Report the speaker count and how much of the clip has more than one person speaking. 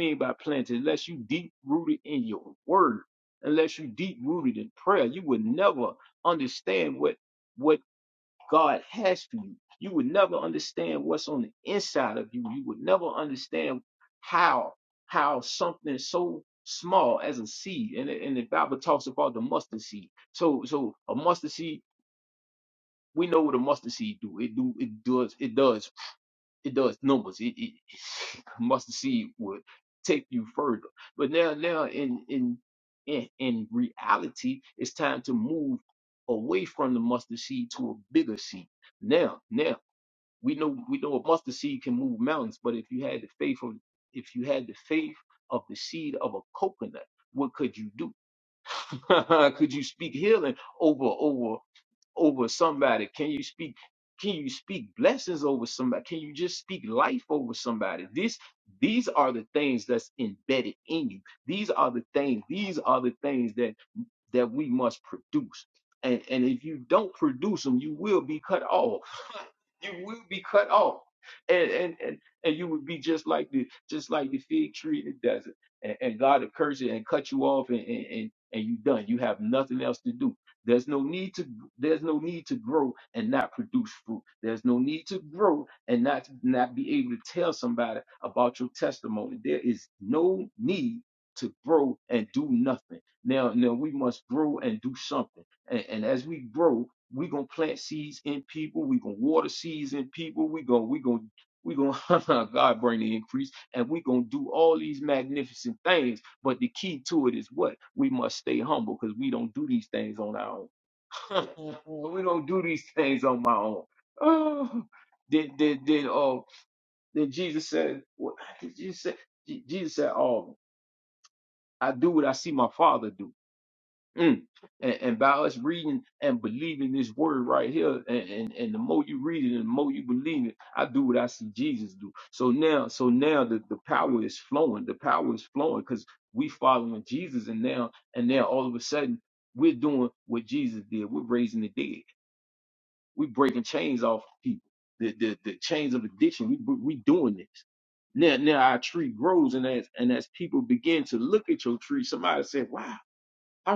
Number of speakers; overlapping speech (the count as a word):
one, no overlap